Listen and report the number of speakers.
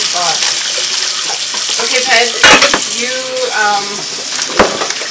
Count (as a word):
one